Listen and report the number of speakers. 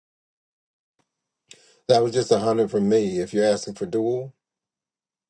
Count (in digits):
1